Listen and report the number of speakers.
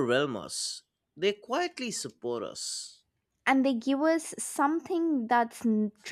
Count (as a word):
two